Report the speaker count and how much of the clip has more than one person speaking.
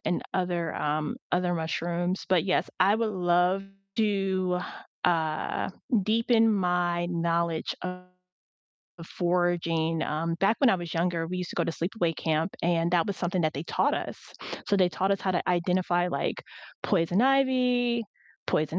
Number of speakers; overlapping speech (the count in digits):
1, no overlap